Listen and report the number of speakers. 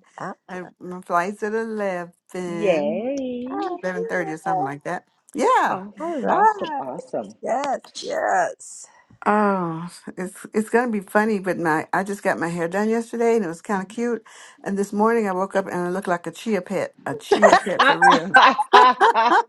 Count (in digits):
3